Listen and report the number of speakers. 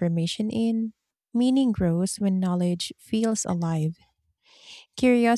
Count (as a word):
one